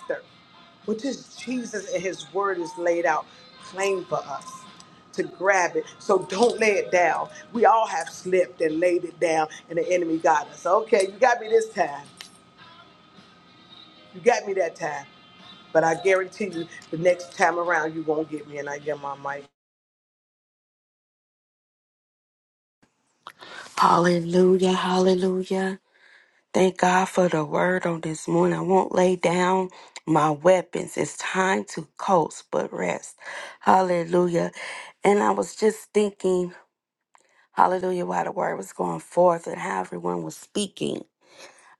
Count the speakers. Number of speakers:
two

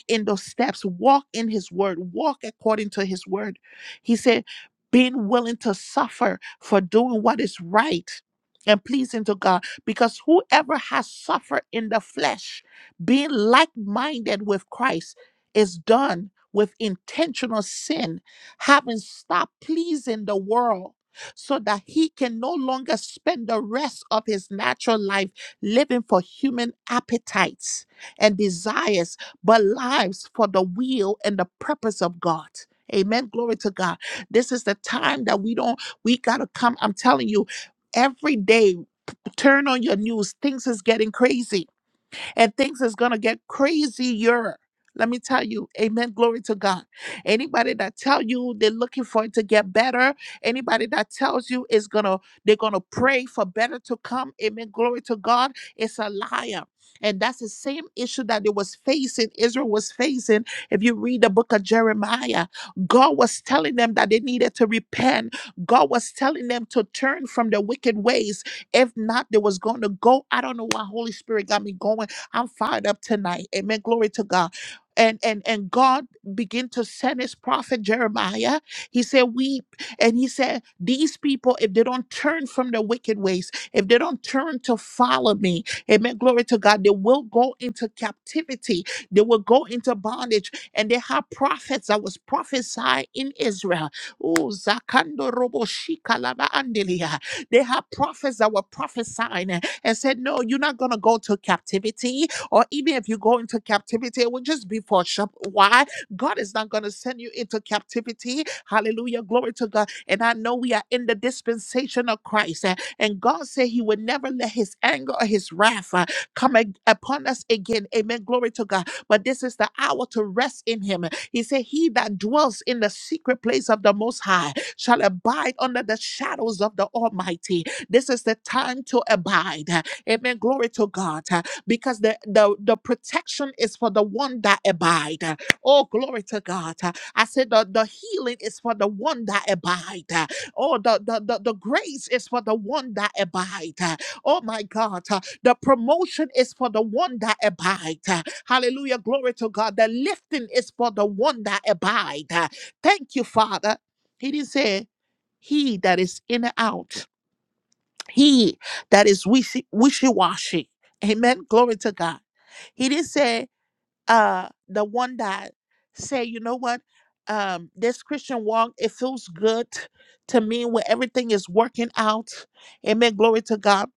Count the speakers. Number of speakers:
one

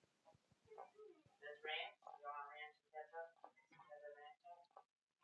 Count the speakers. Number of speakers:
zero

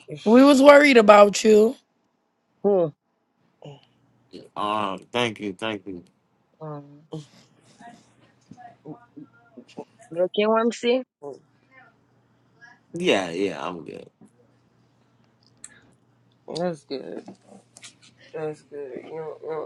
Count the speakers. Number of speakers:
four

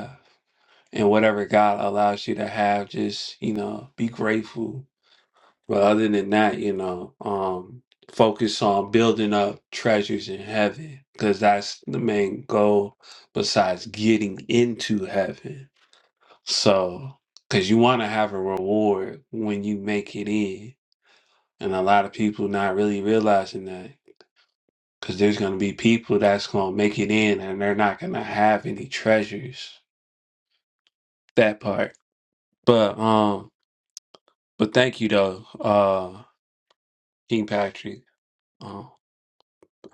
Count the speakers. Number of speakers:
one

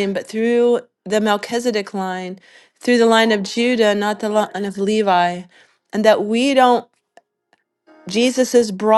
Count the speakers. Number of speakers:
one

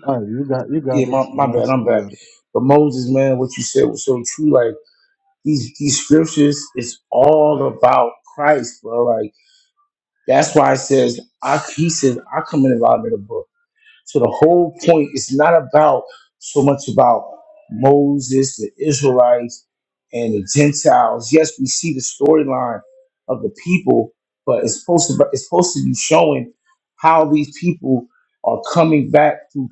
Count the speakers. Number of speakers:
two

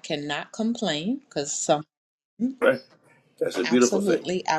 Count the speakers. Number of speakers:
two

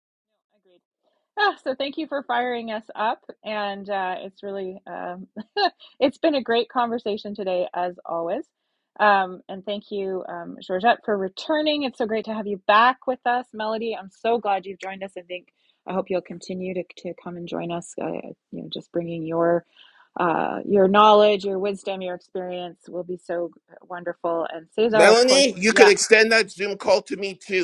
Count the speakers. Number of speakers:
two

